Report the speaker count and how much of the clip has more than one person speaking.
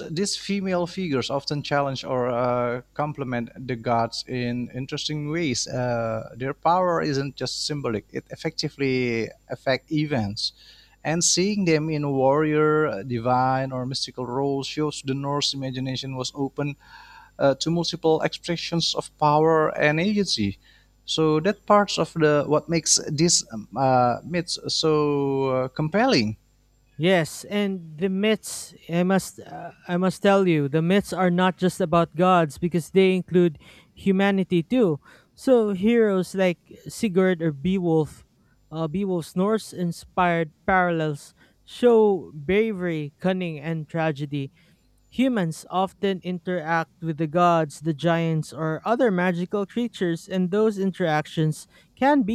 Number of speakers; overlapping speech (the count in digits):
2, no overlap